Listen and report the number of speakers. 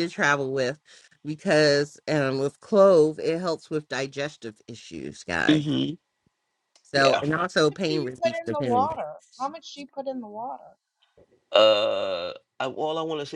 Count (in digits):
3